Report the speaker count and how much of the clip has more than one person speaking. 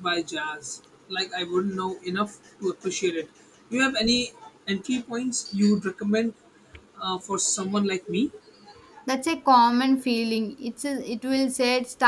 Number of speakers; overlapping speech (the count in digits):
2, no overlap